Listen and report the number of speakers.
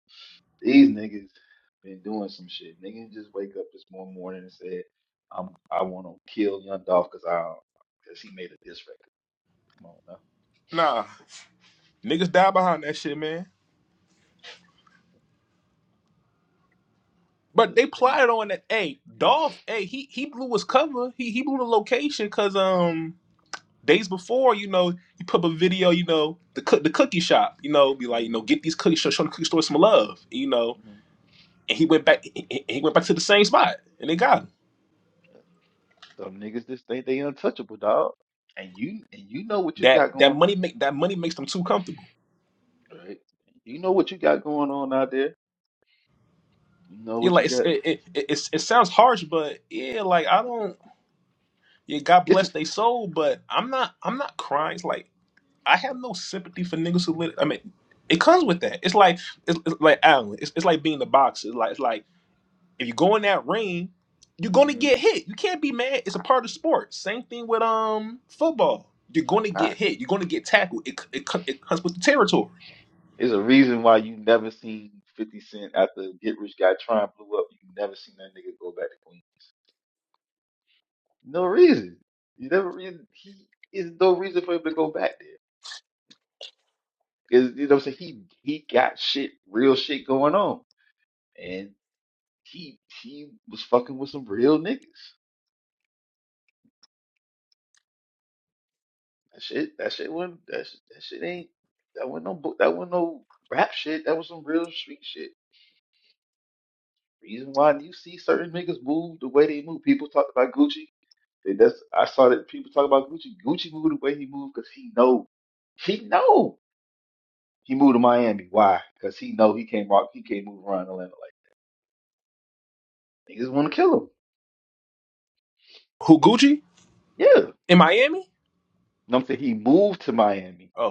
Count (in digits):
2